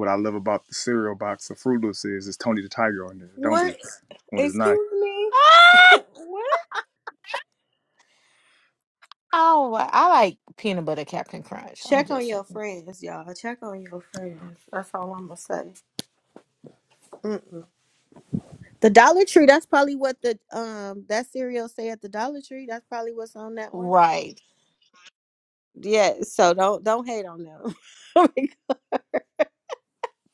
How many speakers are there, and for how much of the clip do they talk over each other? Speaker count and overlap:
3, about 4%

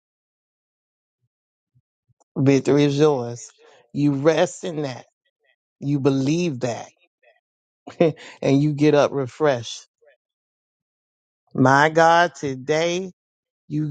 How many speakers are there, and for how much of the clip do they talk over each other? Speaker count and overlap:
1, no overlap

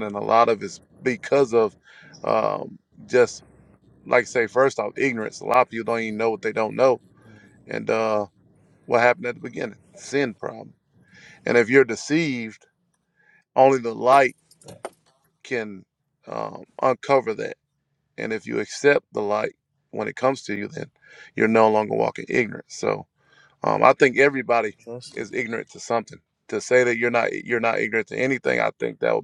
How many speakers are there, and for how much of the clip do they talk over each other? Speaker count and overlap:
1, no overlap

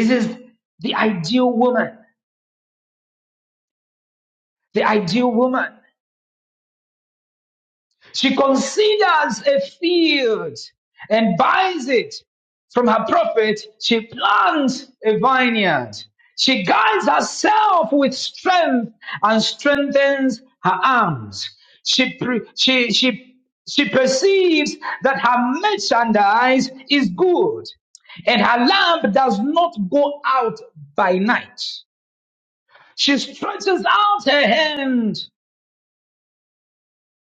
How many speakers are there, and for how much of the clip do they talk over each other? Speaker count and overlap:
1, no overlap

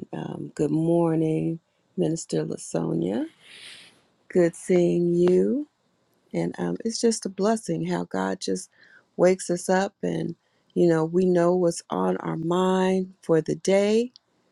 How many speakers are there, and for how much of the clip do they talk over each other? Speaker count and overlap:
1, no overlap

